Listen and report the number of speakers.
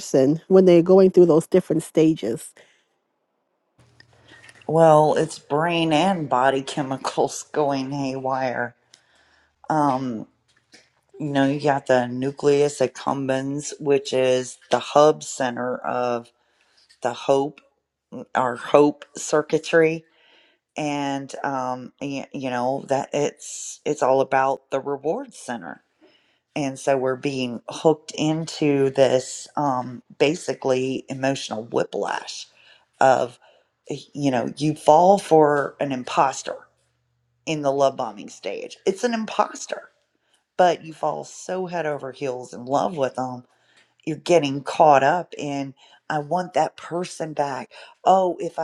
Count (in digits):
2